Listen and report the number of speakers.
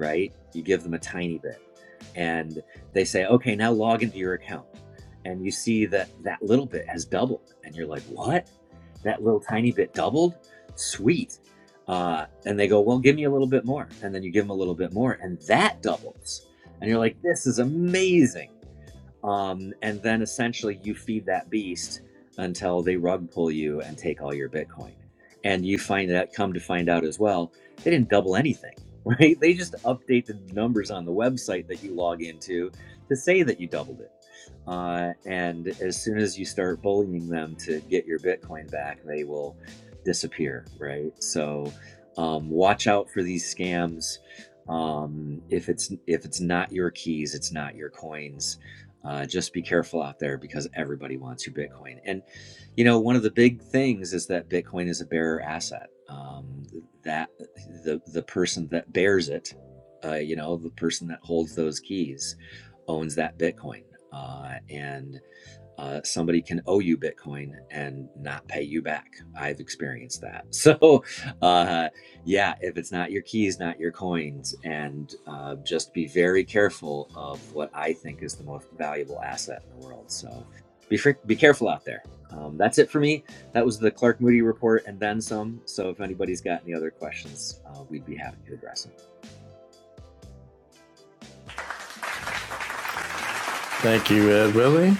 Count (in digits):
2